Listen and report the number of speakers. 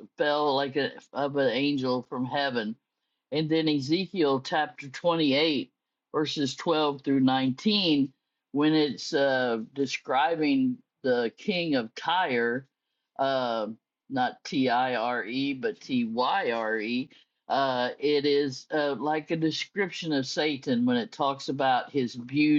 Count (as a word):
one